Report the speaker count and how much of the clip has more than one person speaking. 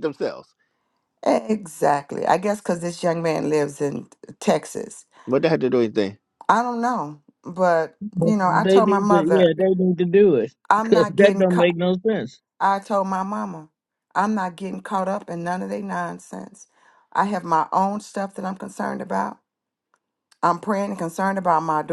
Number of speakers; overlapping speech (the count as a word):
three, about 9%